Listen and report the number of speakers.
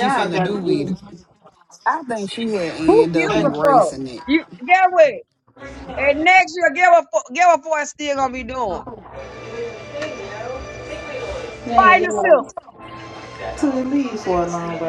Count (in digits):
3